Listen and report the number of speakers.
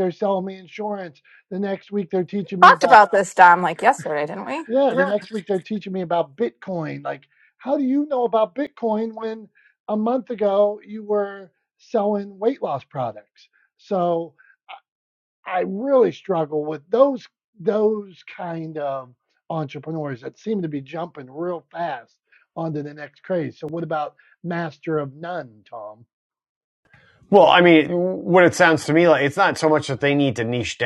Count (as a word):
three